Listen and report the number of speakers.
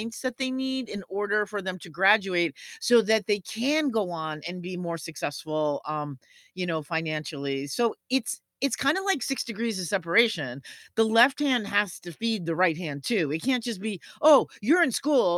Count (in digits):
1